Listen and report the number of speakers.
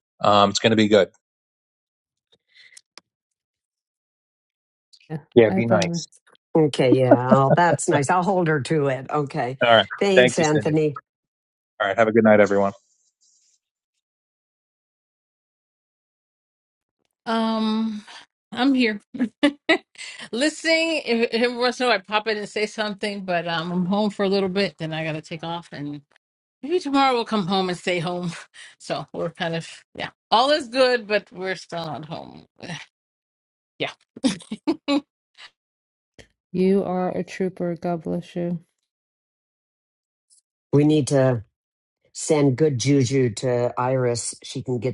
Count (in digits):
4